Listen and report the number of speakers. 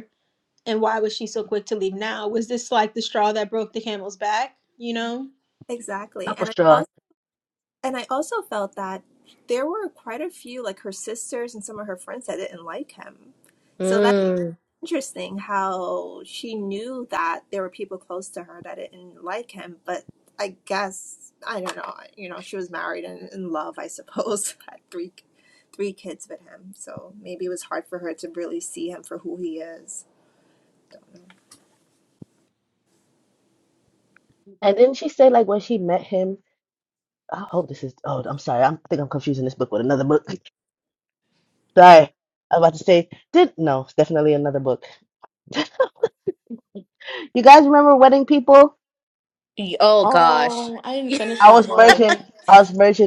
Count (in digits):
5